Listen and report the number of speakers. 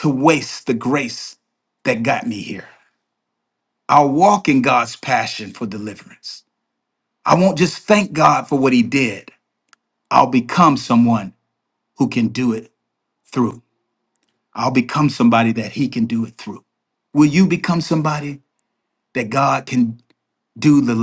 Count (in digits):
1